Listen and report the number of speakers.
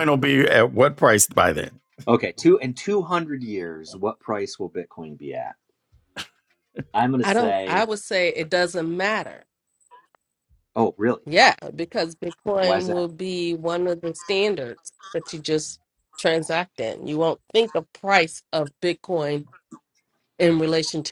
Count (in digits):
3